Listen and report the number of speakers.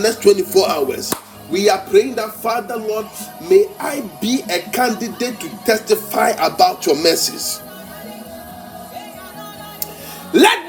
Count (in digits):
1